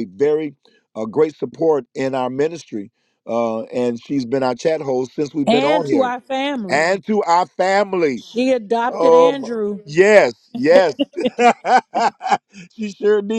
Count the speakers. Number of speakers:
2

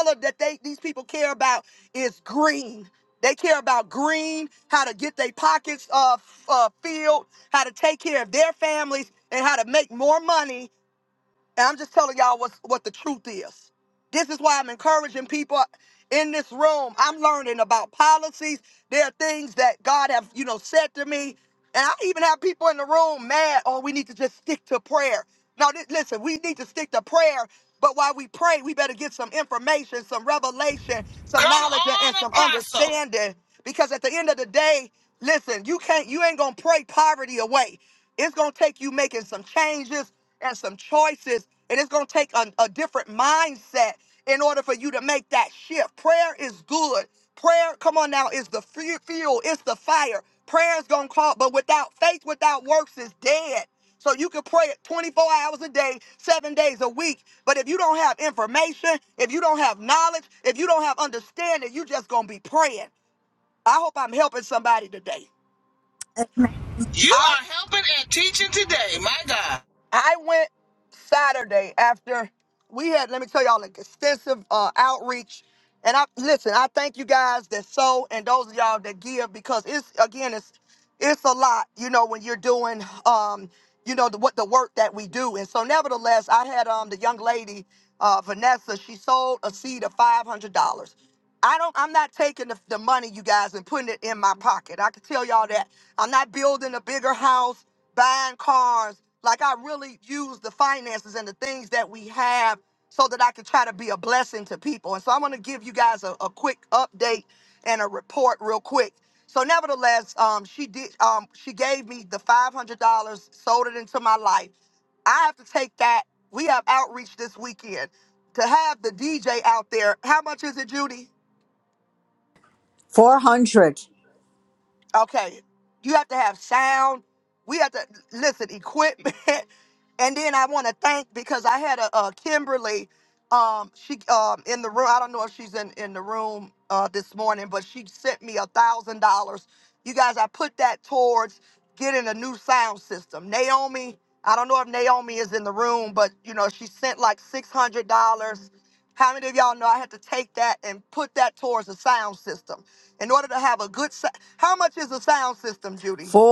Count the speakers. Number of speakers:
3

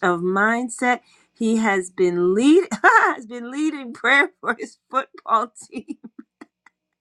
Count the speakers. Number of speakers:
1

